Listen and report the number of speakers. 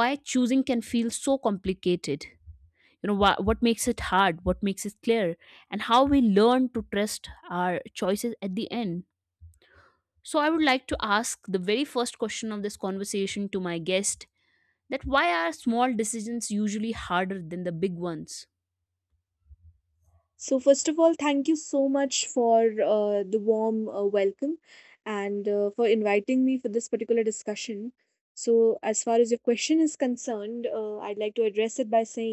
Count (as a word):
two